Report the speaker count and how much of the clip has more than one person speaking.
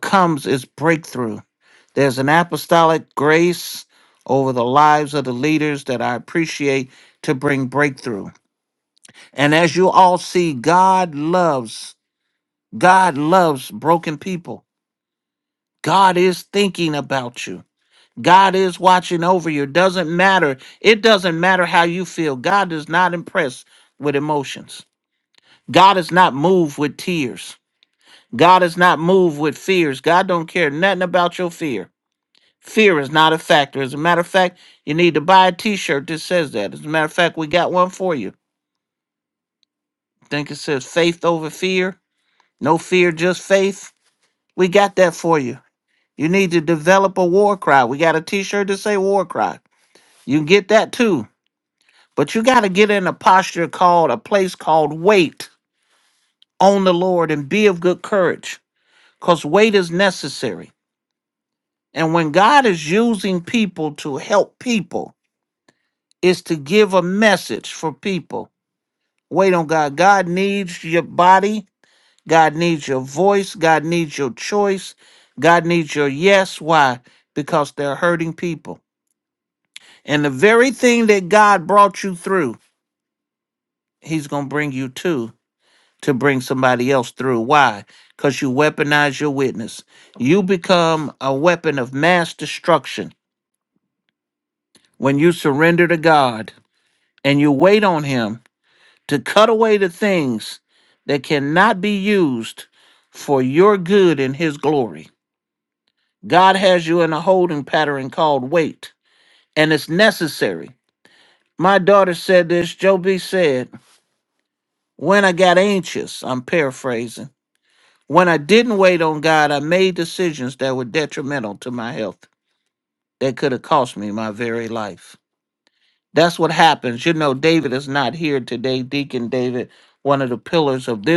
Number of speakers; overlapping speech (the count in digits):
1, no overlap